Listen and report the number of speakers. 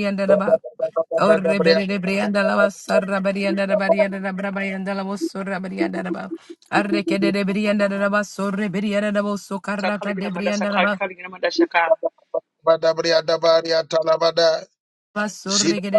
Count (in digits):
3